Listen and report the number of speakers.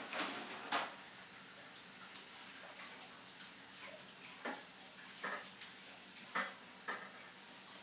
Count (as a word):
zero